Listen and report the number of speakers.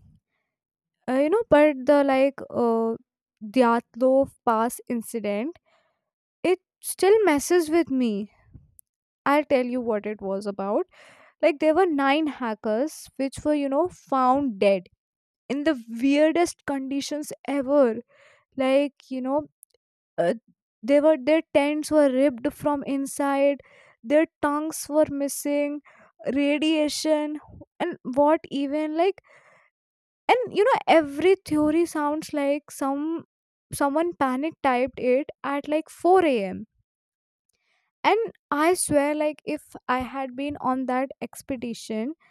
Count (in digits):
1